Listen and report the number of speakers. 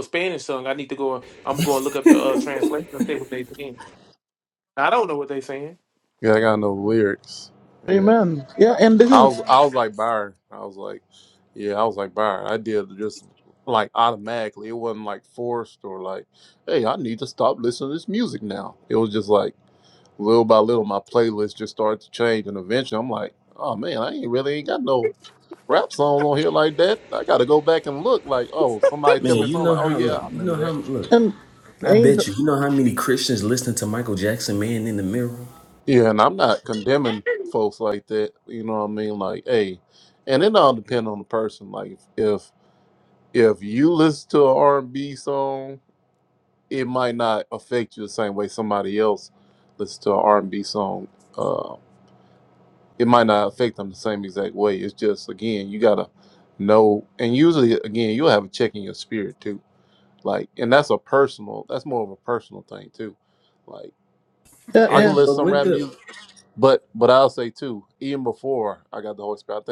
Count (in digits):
4